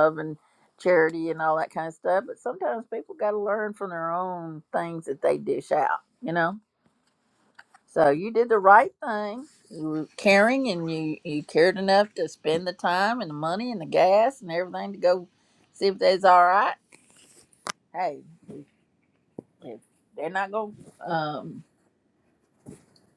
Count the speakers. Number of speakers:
1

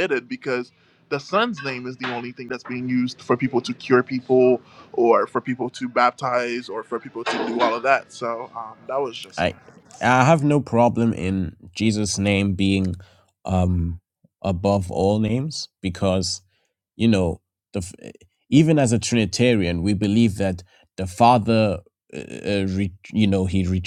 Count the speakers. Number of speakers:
2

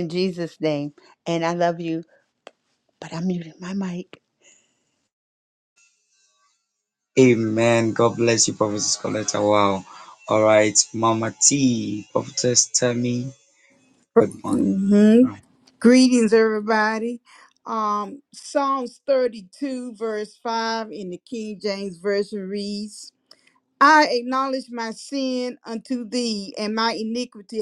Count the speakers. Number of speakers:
3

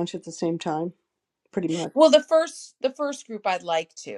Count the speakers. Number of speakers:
2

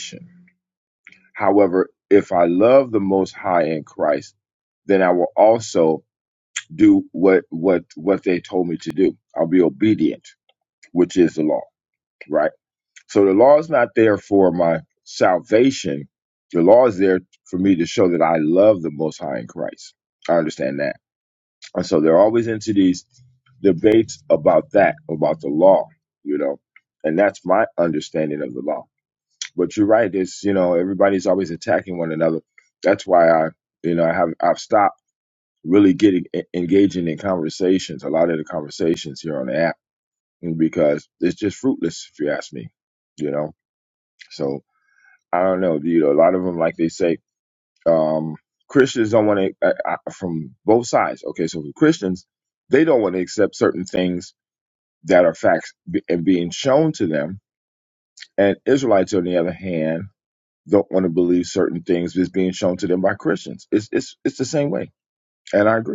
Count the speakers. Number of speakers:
1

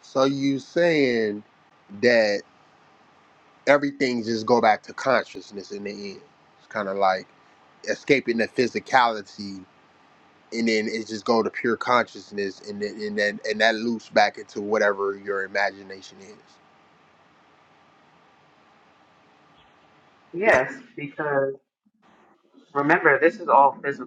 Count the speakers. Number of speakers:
2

